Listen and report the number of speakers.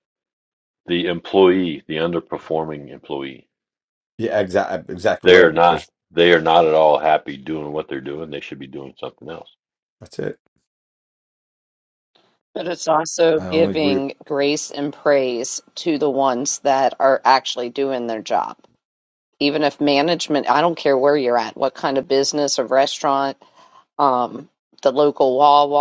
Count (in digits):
3